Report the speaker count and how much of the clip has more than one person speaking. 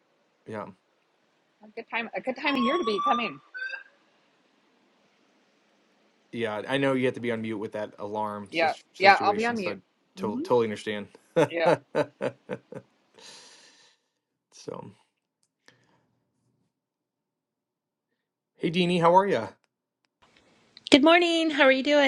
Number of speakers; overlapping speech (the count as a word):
three, about 7%